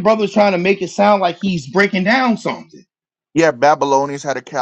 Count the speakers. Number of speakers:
two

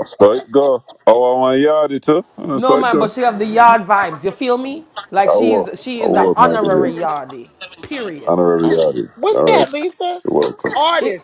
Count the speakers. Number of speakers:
three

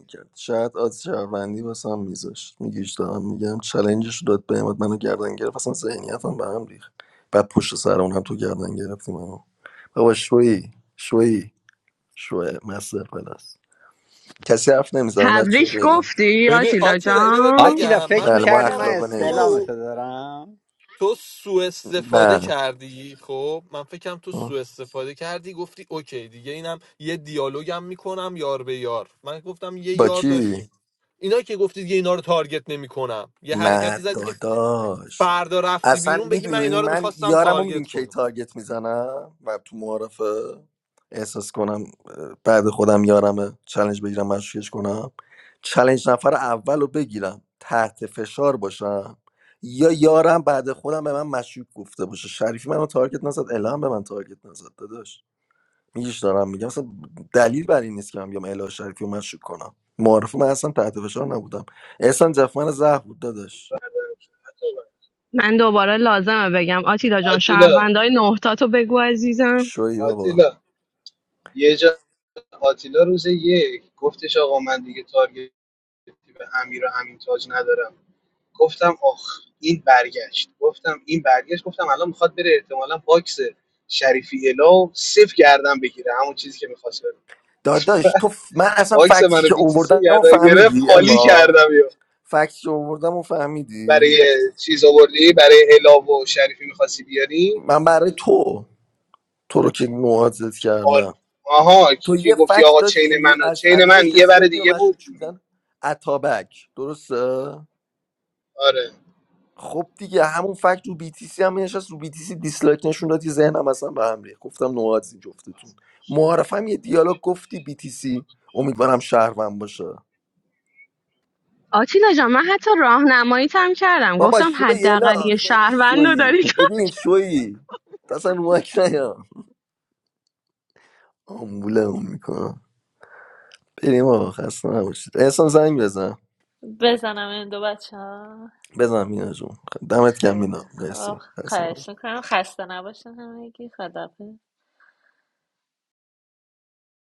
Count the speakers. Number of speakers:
six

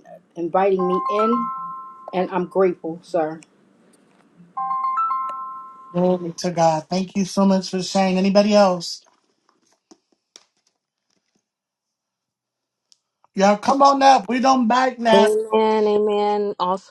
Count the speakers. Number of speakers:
three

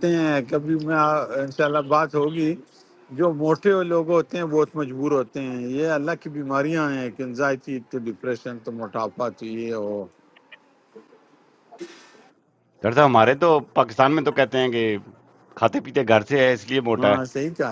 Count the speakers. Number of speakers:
two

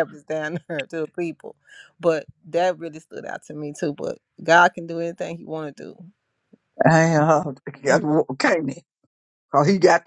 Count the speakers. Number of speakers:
two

